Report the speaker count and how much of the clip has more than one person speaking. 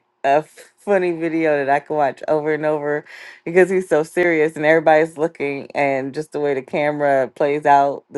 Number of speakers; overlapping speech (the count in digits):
1, no overlap